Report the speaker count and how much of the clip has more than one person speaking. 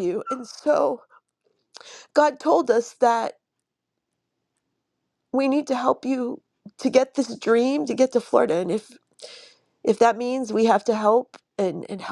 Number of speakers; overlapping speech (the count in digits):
1, no overlap